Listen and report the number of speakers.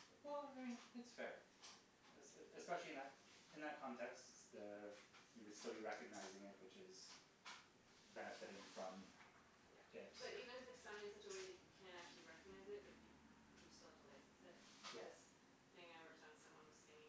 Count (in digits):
2